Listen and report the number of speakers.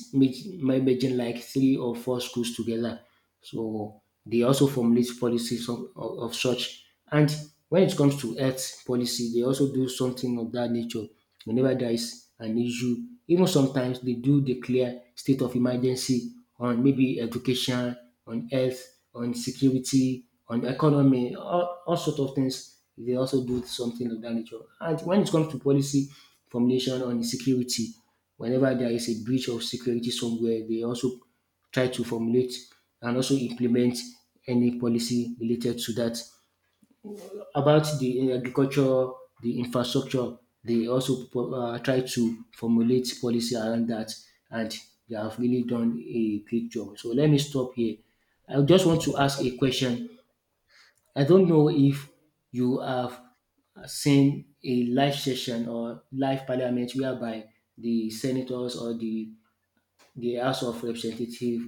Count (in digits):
1